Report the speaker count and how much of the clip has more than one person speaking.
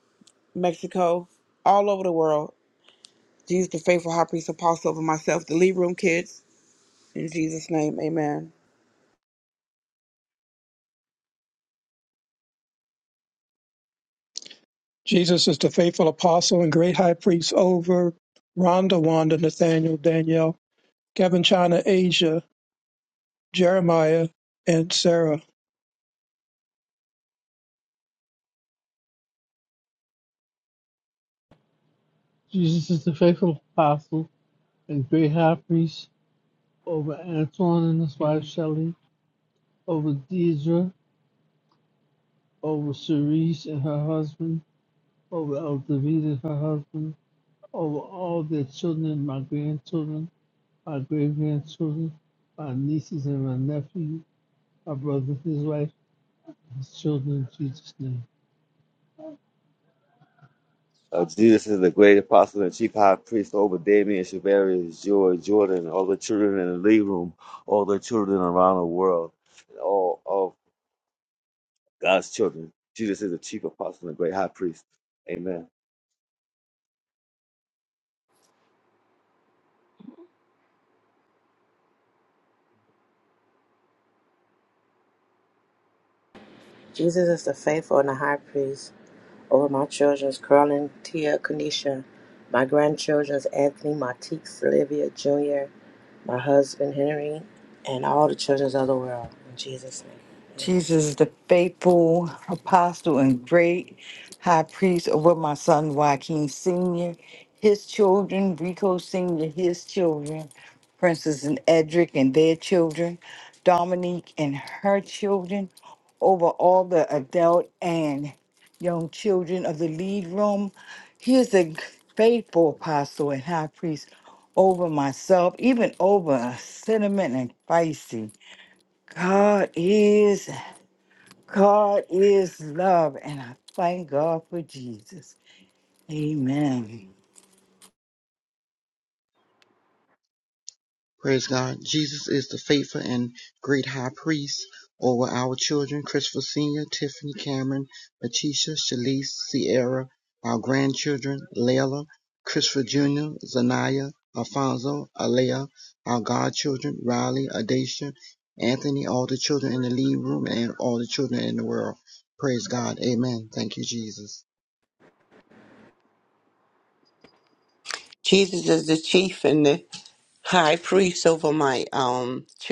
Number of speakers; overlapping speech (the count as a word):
eight, under 1%